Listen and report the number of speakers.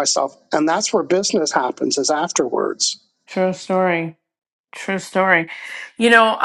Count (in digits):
2